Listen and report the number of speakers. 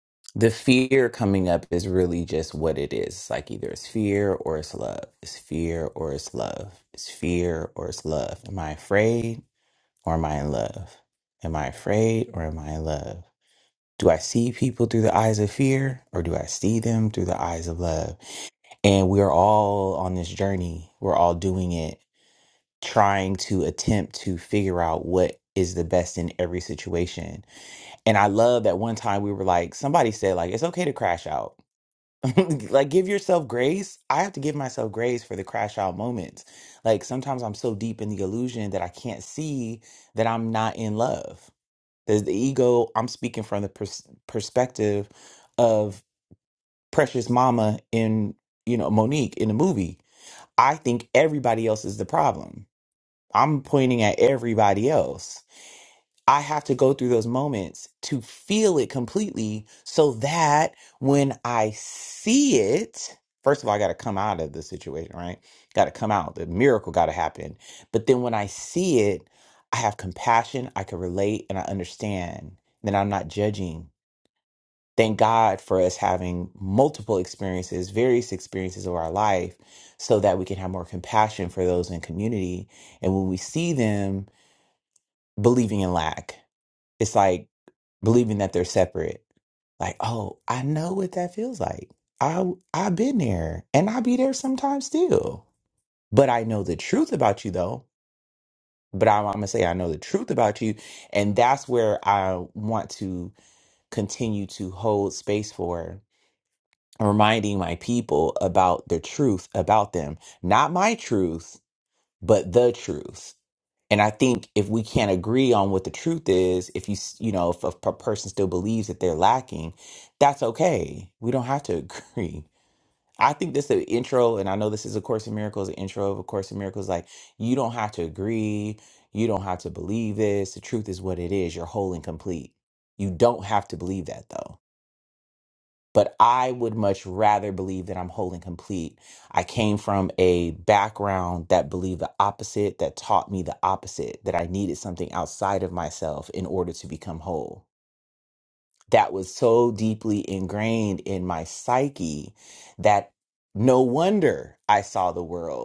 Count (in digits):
1